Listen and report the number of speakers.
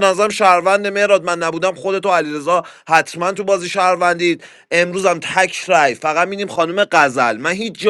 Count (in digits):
1